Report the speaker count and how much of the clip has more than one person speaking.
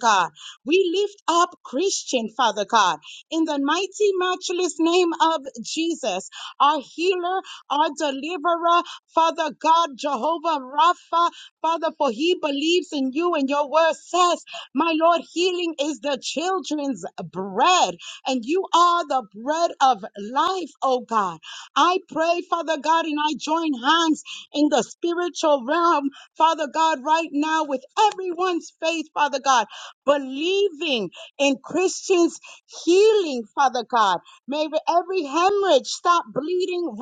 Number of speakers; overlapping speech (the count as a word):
one, no overlap